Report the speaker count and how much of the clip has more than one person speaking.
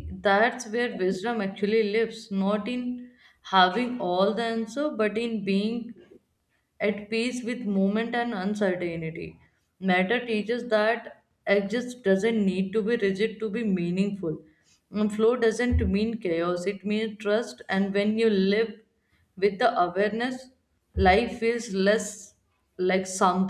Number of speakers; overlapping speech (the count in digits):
1, no overlap